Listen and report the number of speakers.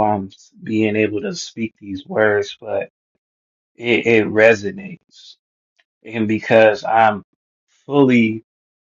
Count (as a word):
one